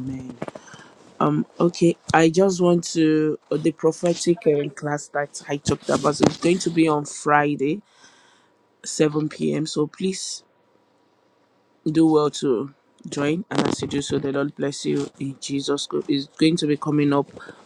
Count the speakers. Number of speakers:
1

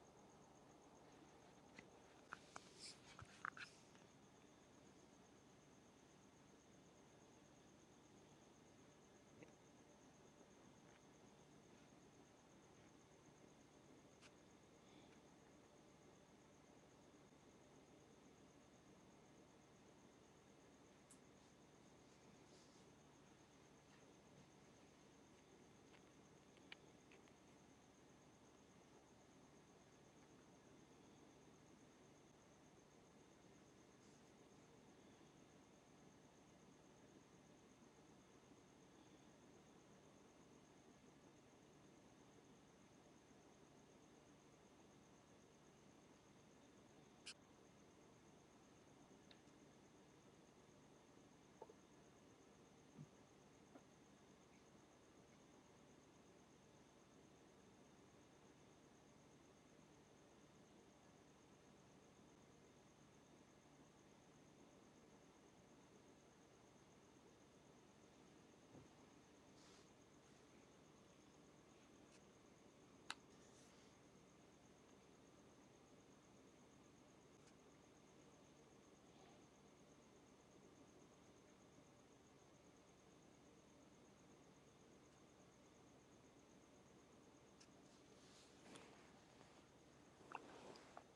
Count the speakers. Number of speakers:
0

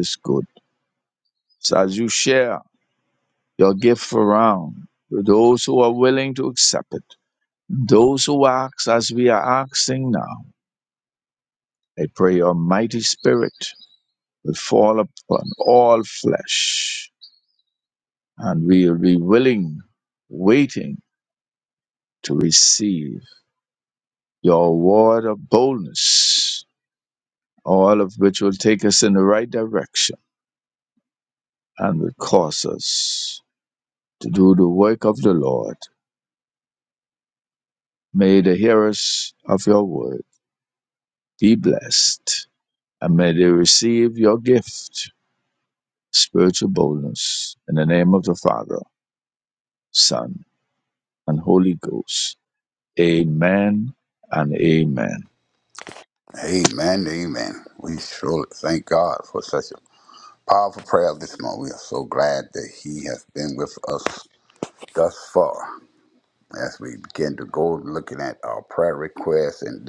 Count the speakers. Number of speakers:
2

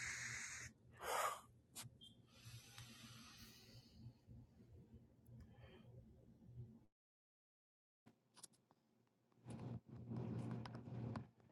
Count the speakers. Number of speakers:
0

